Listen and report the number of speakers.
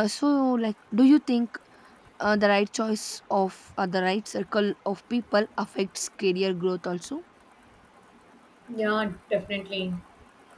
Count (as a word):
two